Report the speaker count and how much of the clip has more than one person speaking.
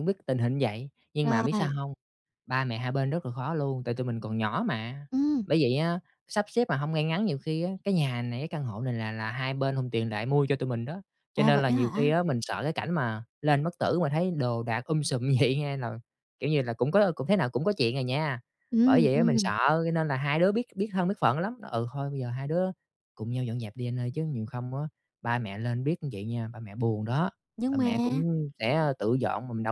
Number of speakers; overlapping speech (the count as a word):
two, about 7%